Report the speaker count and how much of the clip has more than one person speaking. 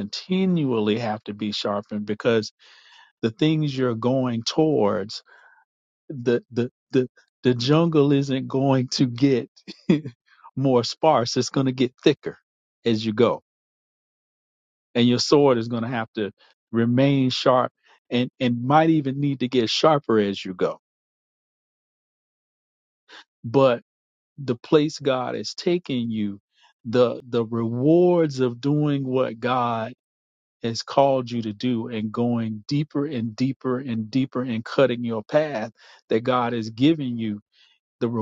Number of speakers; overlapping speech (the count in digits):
1, no overlap